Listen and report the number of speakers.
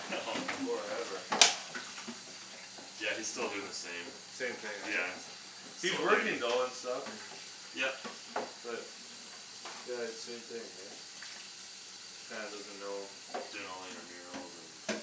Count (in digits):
2